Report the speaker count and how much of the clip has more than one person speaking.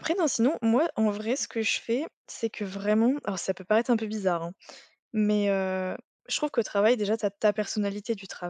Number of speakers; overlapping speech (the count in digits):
1, no overlap